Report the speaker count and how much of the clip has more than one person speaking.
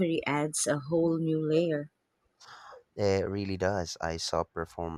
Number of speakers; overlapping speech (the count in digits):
2, no overlap